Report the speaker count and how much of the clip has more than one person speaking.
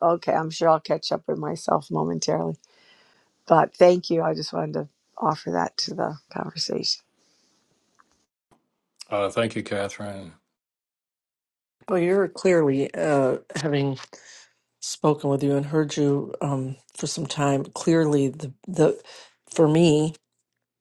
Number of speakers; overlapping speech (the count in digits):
3, no overlap